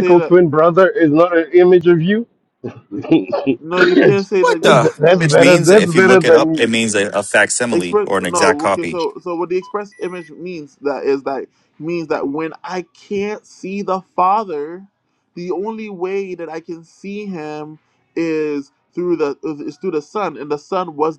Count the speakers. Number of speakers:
3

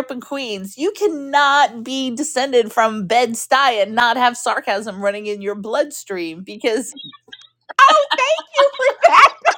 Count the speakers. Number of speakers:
2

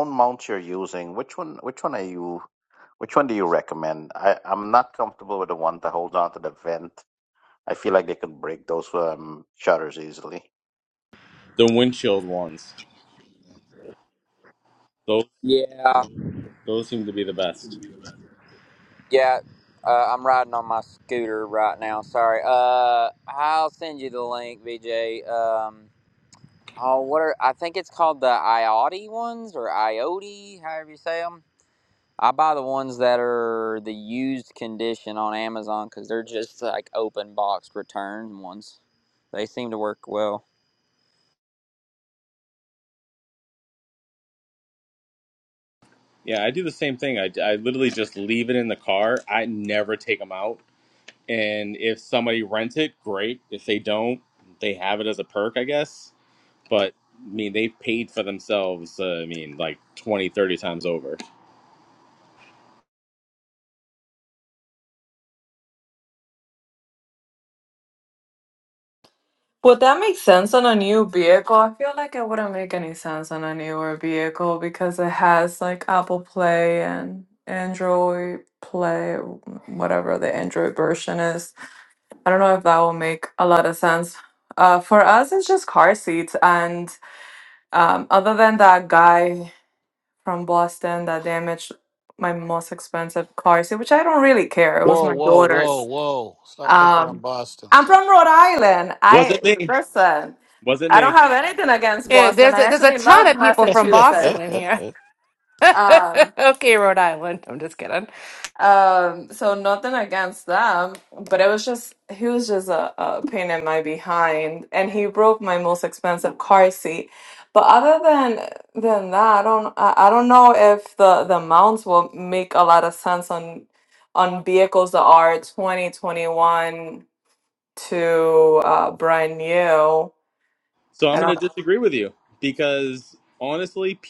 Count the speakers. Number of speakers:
6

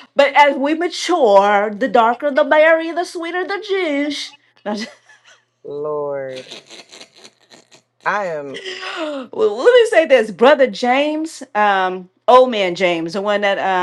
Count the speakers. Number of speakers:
2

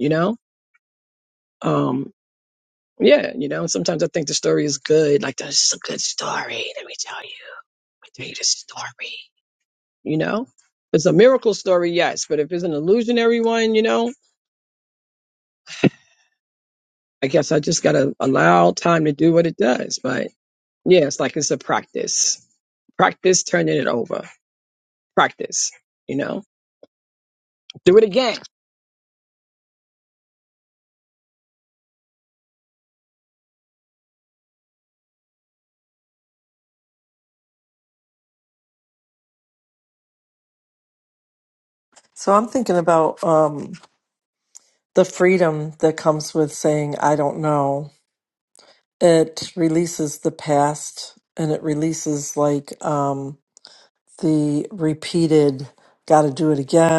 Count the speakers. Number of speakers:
2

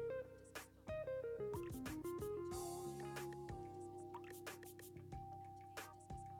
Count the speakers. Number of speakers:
0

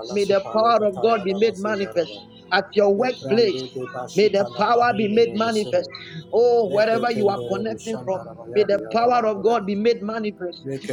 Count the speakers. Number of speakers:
2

